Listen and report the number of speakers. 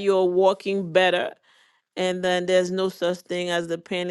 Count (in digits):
1